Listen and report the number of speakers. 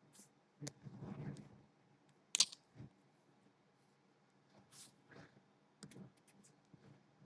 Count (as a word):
zero